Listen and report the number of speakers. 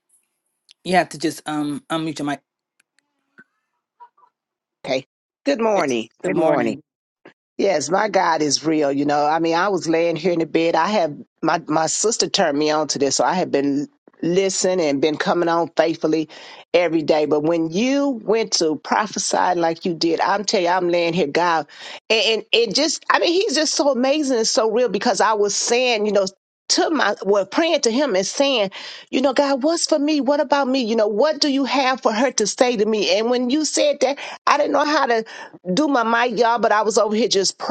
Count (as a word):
two